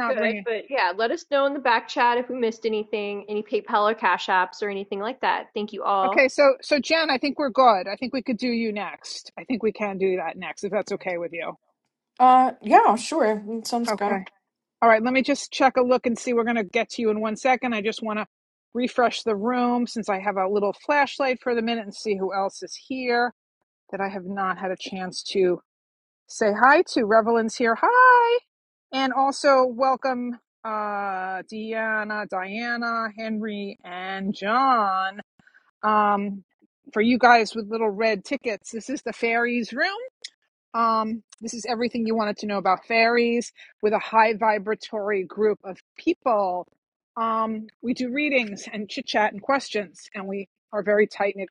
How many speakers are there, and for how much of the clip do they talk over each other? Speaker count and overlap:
three, about 2%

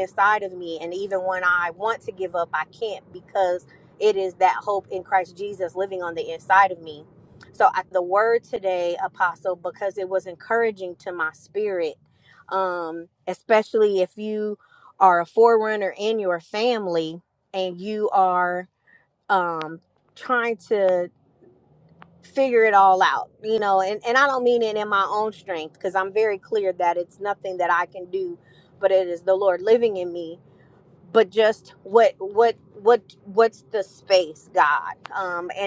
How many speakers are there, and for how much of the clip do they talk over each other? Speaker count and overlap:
one, no overlap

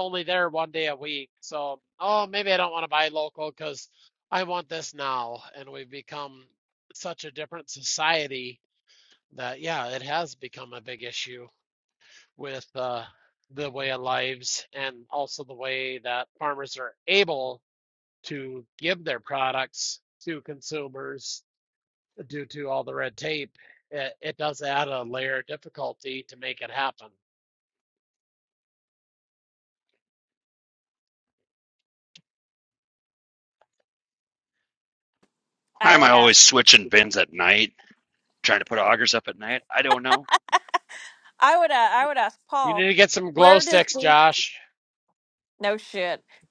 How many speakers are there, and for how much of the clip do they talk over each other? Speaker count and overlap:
three, about 3%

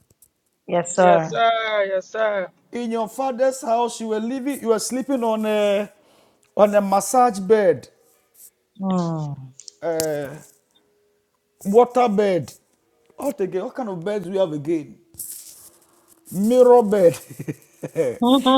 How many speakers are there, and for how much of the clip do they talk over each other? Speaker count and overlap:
three, about 2%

